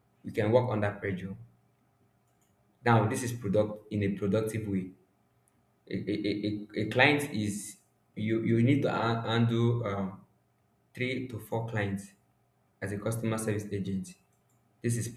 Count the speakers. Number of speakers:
one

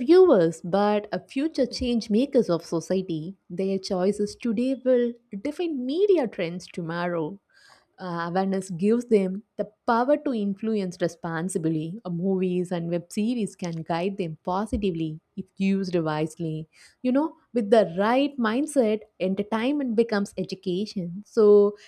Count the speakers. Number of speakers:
one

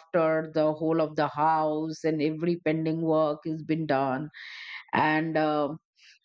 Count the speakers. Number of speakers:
one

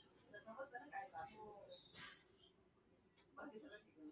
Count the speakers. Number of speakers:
zero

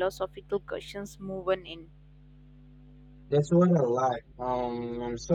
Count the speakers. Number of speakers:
two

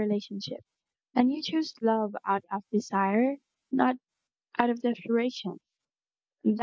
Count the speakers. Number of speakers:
one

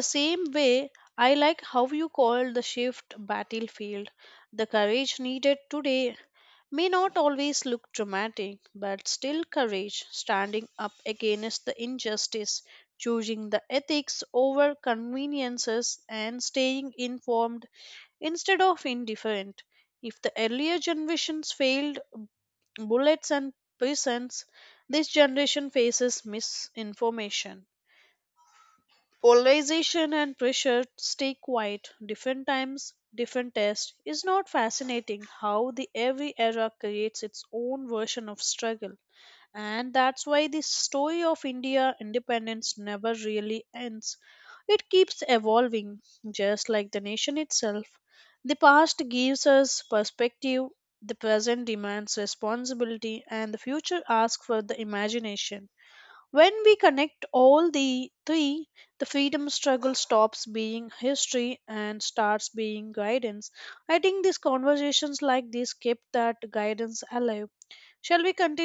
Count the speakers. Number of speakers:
one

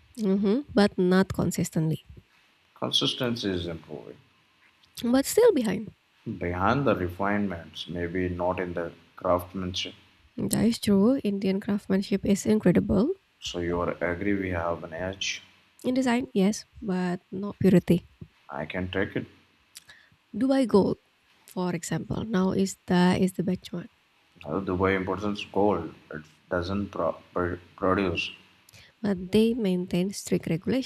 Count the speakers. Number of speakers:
two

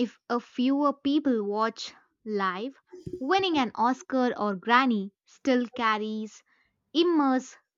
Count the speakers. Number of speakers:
one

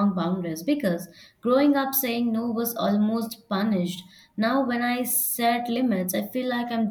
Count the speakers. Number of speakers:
one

